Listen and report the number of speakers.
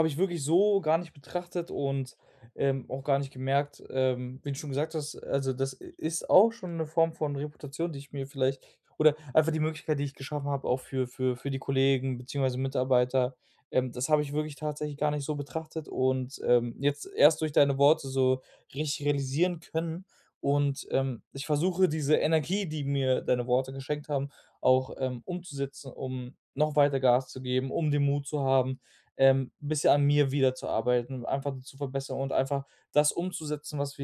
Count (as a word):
one